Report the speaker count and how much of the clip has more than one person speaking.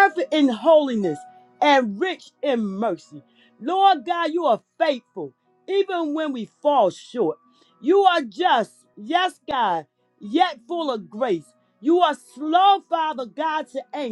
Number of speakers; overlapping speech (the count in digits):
1, no overlap